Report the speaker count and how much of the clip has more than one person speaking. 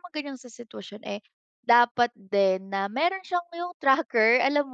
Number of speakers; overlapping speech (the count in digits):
1, no overlap